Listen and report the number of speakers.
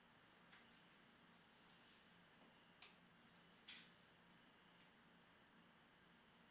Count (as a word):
zero